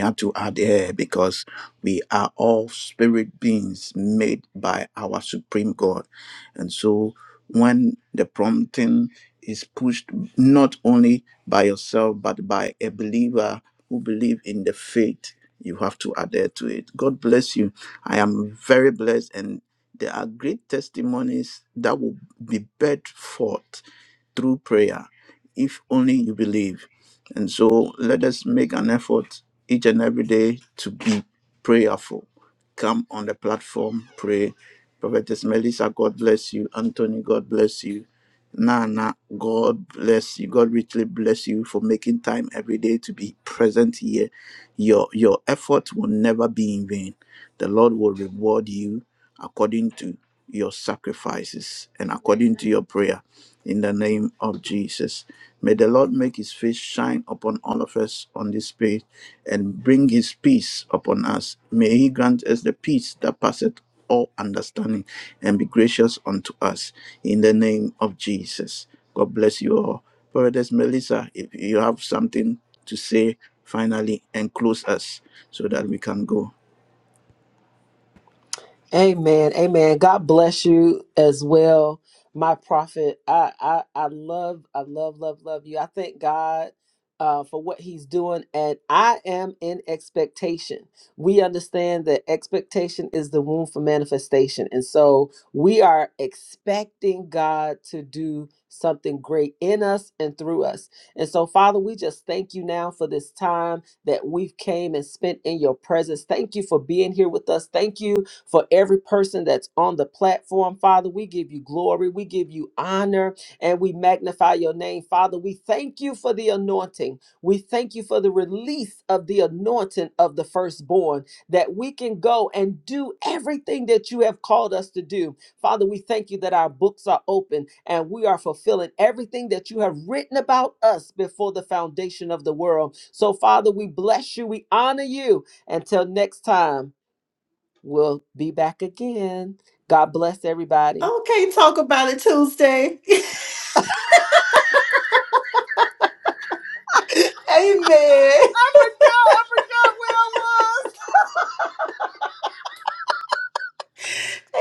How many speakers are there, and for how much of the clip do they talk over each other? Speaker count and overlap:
3, under 1%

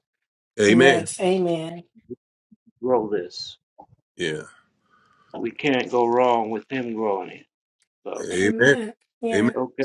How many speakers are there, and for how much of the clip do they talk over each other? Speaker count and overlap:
3, about 11%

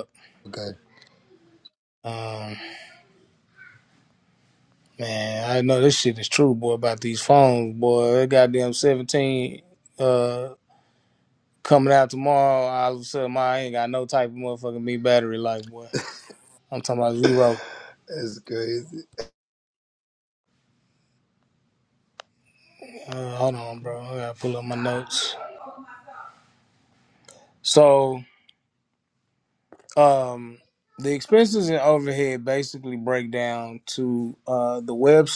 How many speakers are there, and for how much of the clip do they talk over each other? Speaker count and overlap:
2, no overlap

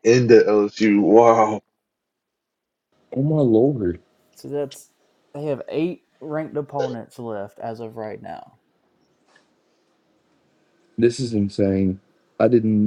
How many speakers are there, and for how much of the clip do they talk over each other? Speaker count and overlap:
3, no overlap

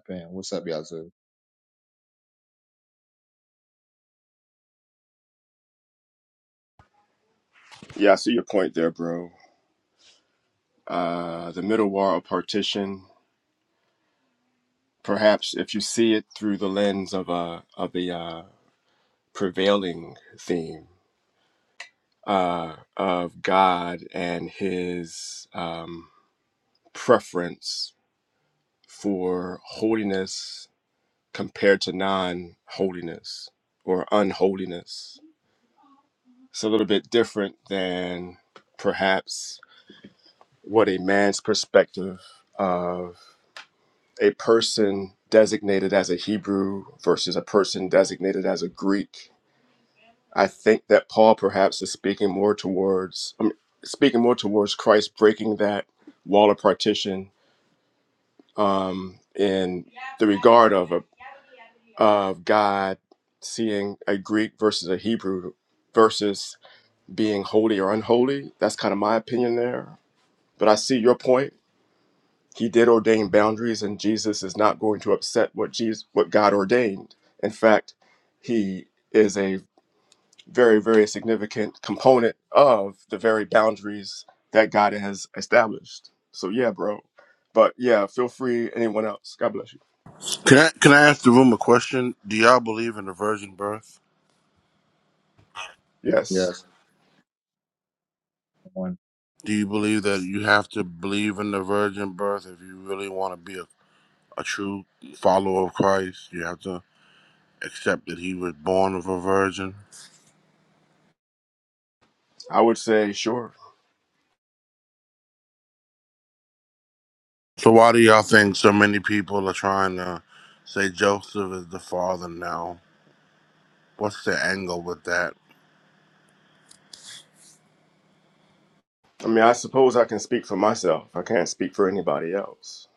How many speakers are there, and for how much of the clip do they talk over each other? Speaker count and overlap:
3, no overlap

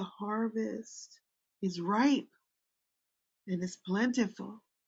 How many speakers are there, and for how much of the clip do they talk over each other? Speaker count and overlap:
1, no overlap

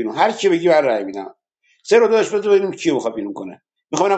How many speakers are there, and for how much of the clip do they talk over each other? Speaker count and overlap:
1, no overlap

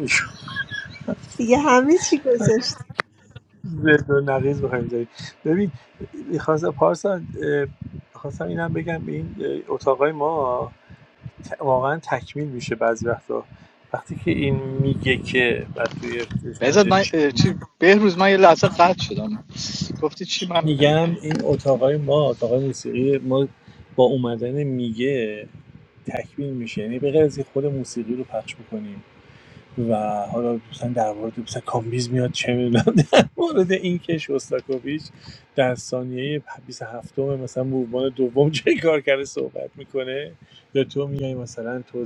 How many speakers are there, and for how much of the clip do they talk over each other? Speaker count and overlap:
3, about 2%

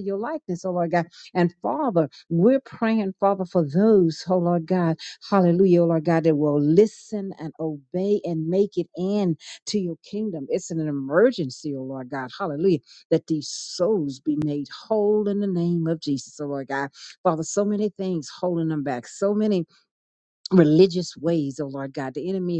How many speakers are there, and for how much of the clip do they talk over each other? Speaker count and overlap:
1, no overlap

